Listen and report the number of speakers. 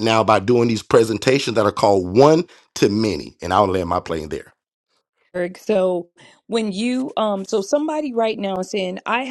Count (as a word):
two